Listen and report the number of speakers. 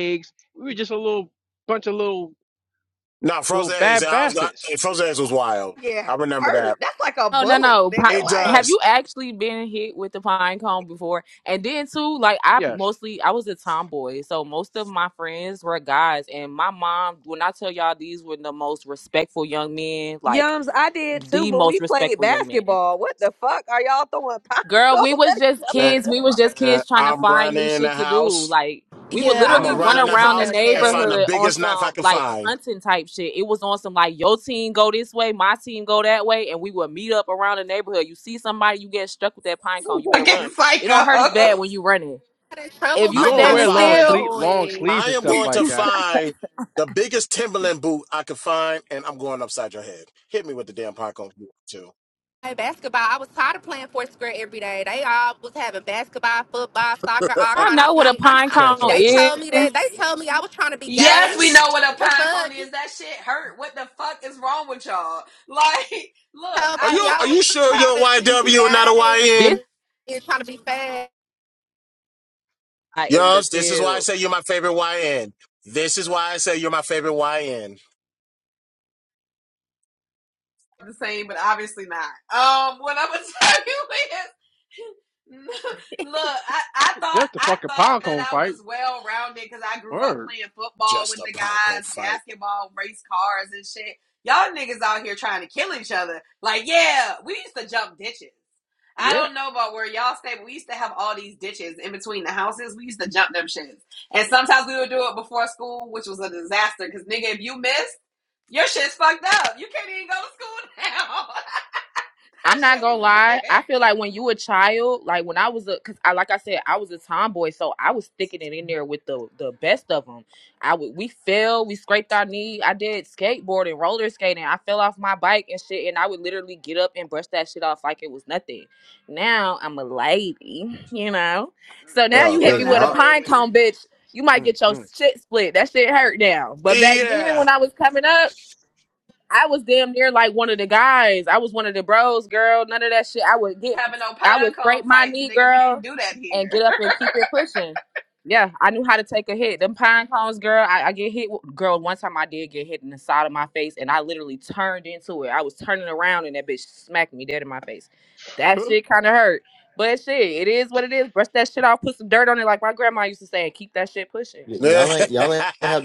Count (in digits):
6